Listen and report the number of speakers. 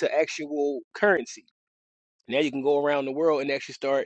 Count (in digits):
1